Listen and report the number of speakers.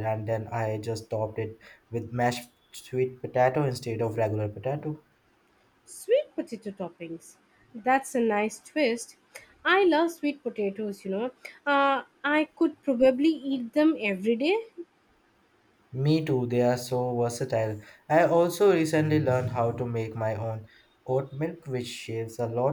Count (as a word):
two